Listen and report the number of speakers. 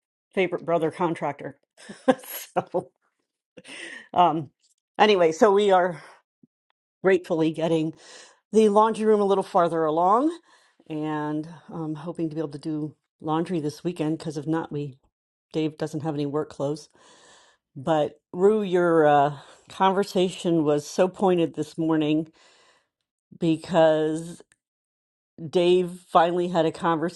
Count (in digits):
1